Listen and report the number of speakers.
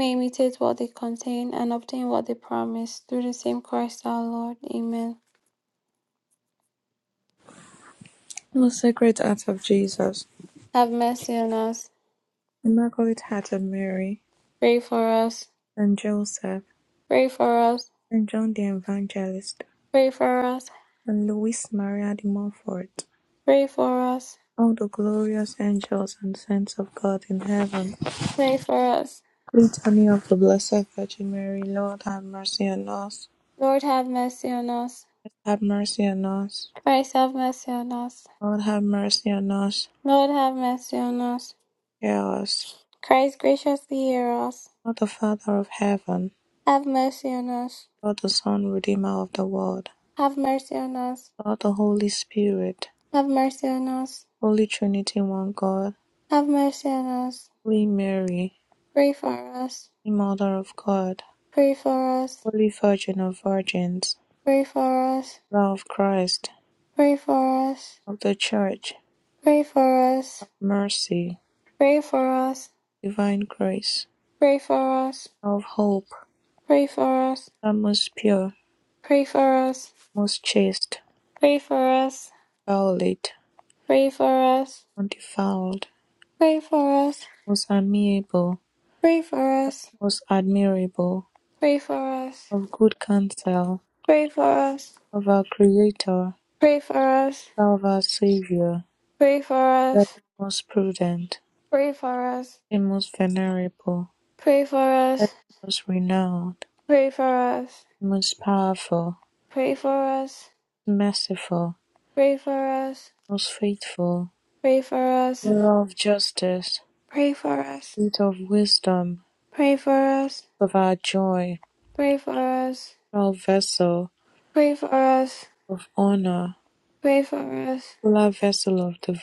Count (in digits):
2